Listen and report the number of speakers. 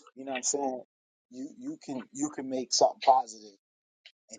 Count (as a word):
one